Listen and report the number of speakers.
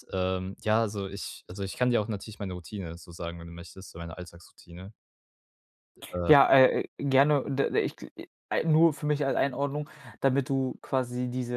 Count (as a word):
two